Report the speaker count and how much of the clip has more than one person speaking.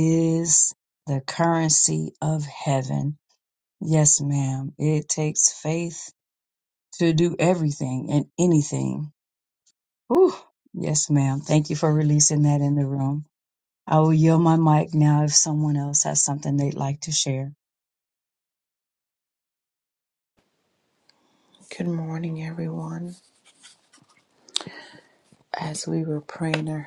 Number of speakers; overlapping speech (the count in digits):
2, no overlap